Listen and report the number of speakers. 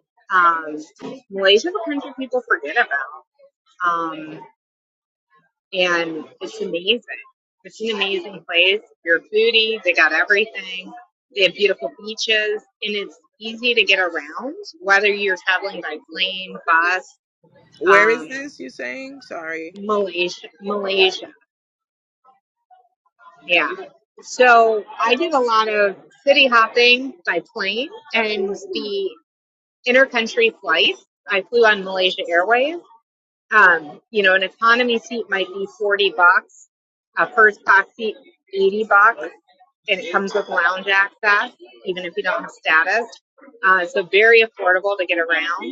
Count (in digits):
2